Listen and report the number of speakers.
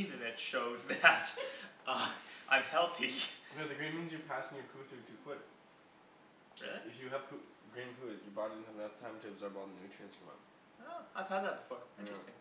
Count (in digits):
2